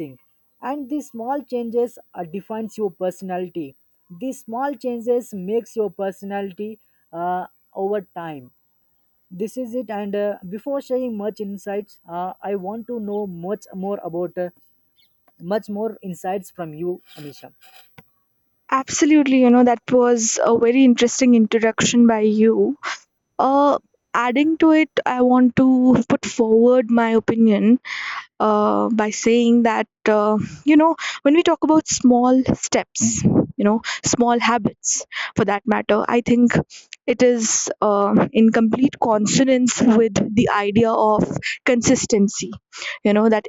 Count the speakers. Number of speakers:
2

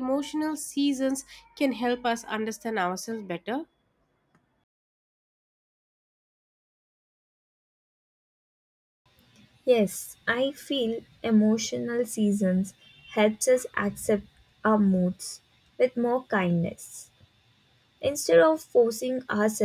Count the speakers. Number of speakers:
2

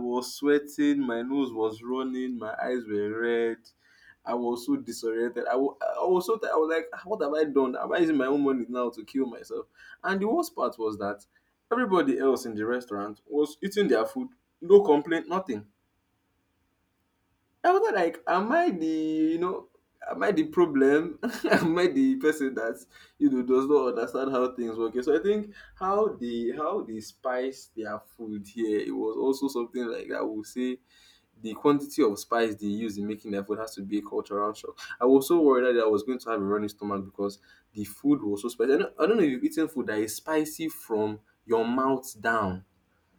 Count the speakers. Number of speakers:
1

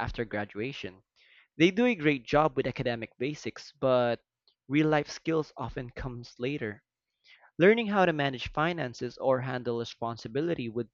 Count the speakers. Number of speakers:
1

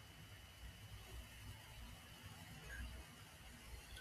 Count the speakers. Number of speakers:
0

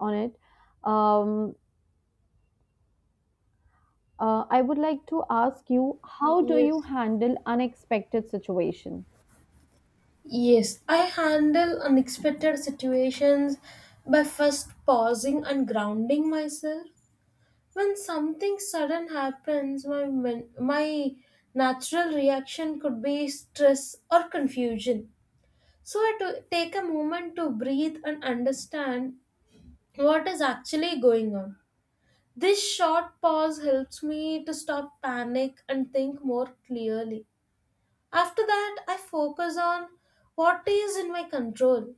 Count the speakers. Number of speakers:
2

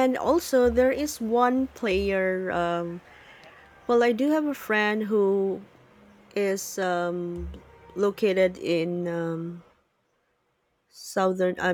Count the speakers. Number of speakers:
1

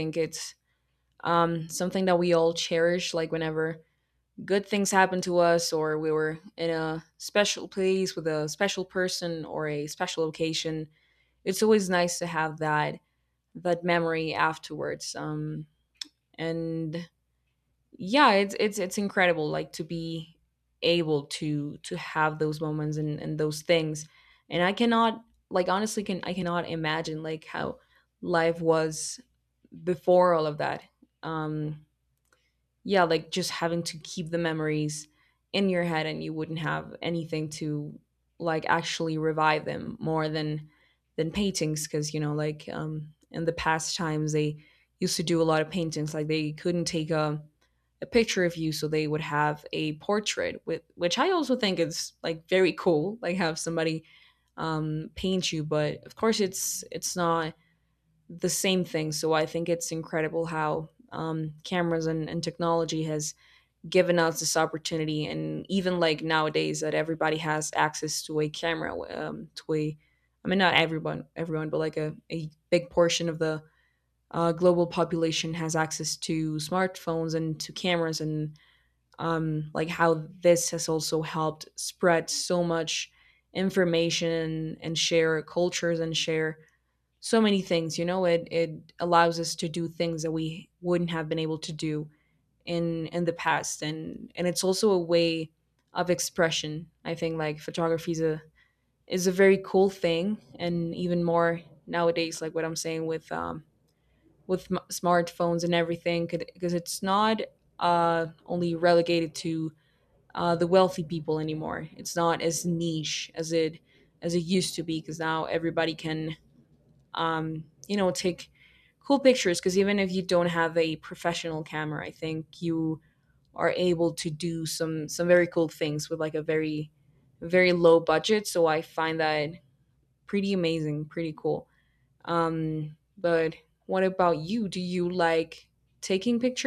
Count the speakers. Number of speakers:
1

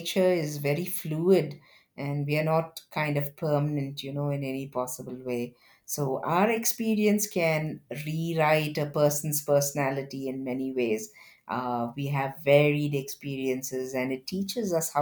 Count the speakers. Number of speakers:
1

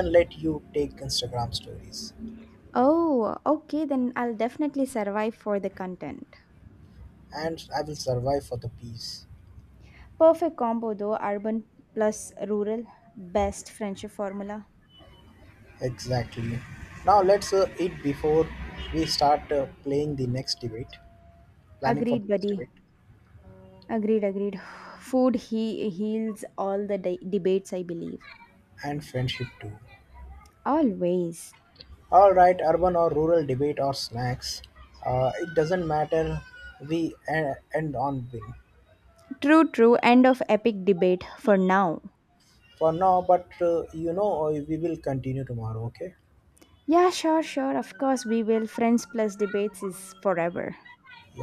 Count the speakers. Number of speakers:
2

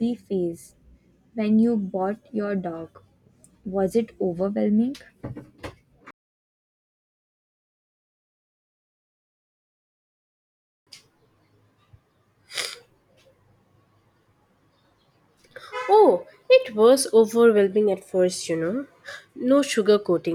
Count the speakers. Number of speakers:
2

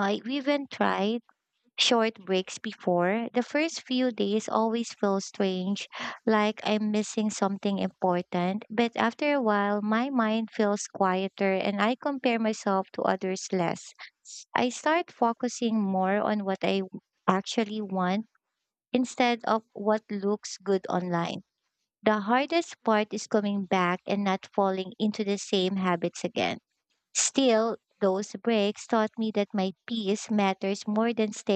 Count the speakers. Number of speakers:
1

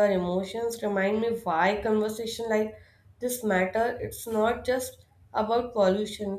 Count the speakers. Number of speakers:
1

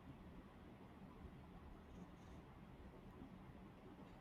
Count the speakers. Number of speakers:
0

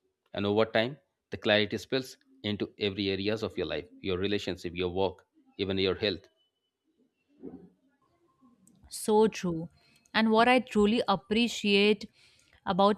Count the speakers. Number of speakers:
2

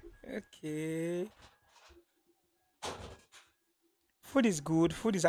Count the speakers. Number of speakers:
1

